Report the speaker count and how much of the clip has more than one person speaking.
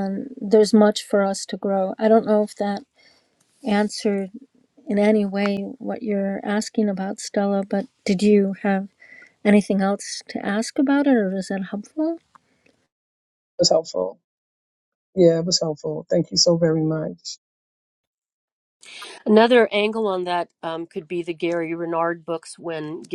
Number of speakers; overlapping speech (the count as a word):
three, no overlap